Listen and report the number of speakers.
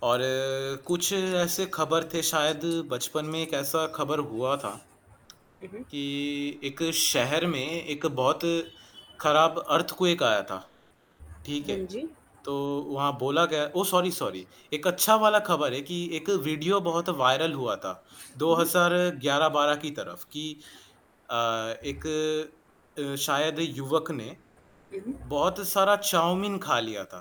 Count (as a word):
two